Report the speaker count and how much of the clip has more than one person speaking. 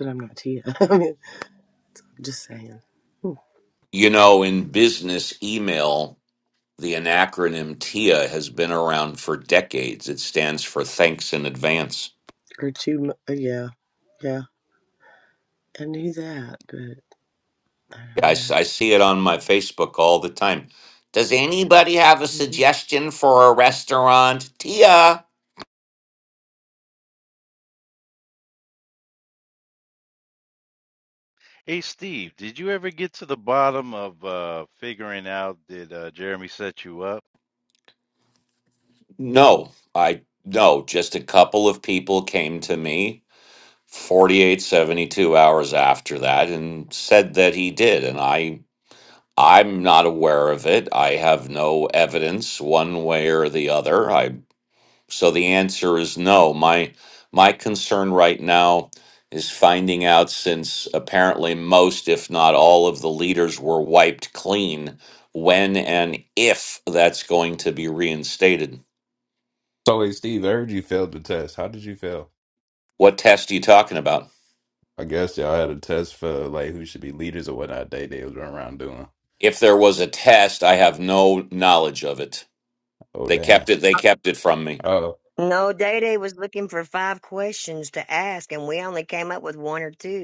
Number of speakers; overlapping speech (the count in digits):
5, about 1%